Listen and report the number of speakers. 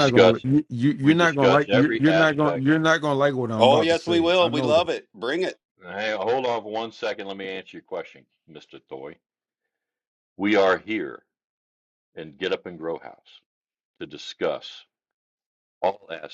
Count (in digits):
3